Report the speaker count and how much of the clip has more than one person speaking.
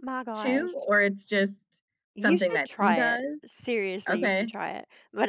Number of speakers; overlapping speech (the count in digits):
2, about 37%